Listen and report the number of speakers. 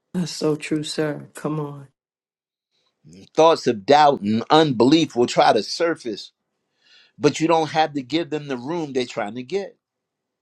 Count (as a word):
two